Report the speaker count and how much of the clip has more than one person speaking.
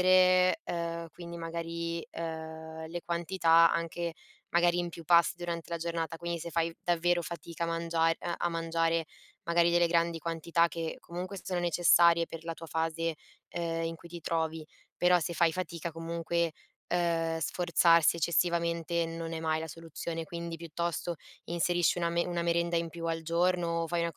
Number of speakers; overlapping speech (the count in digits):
1, no overlap